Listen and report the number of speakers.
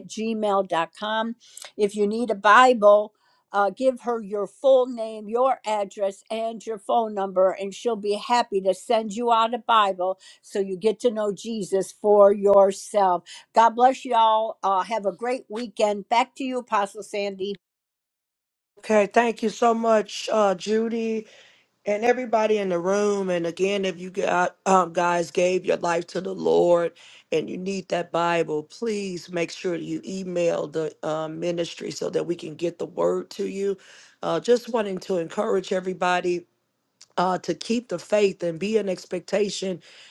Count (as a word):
two